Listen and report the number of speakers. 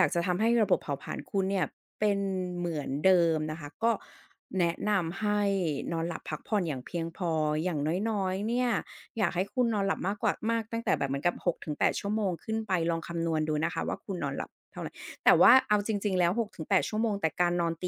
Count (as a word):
one